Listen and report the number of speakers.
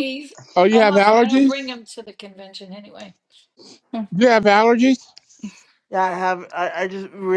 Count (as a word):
three